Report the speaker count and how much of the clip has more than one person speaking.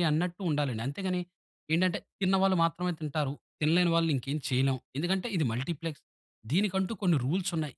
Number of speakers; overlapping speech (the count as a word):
one, no overlap